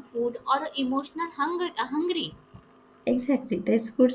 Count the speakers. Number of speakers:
2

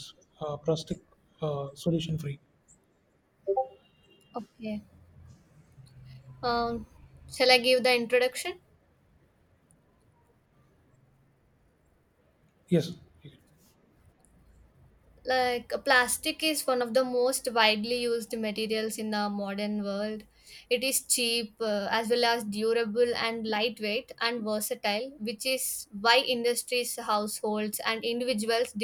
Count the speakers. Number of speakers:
2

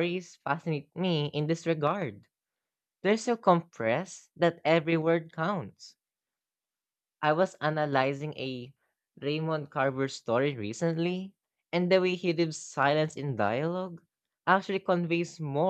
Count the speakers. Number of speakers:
1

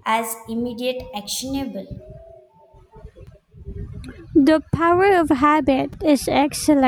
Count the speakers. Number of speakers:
2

